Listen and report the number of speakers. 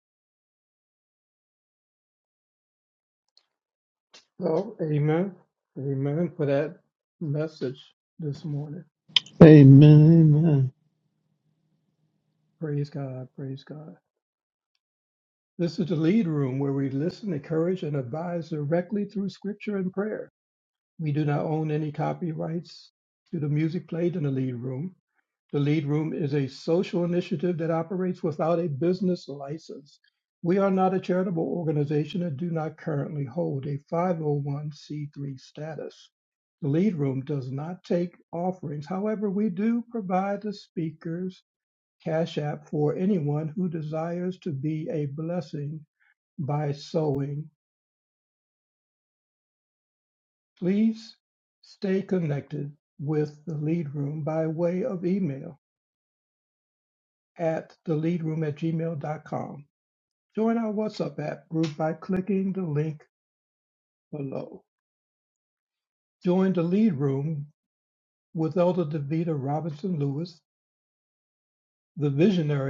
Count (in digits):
2